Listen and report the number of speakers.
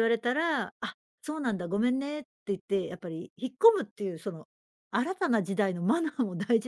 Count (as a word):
one